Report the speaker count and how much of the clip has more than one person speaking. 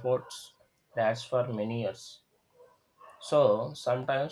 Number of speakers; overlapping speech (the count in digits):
1, no overlap